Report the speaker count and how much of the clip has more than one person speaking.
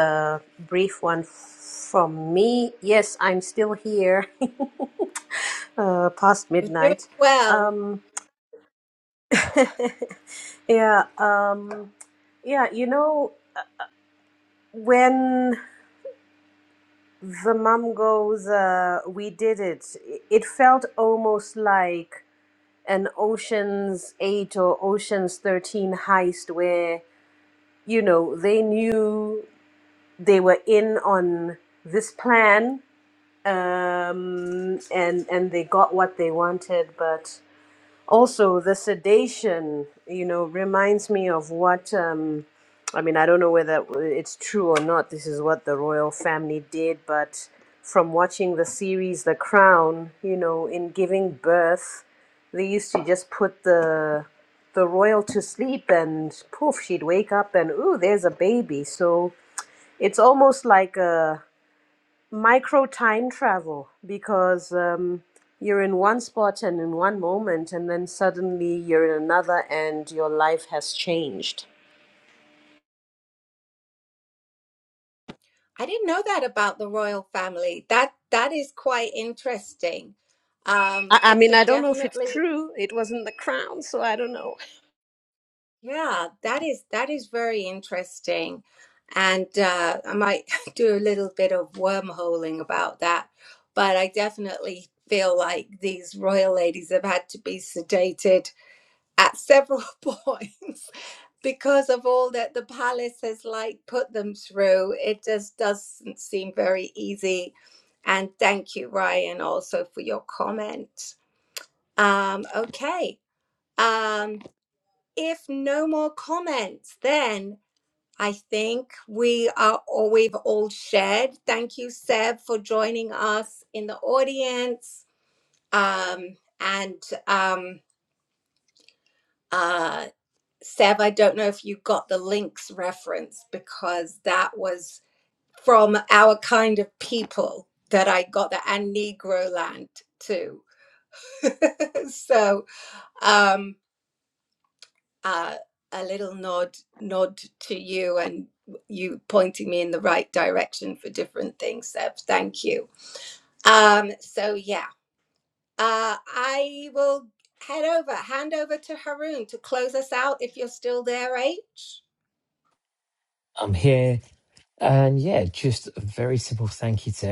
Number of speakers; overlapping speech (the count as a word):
three, about 1%